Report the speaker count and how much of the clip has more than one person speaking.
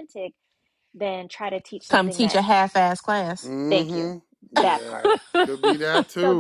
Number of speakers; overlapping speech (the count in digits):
3, about 24%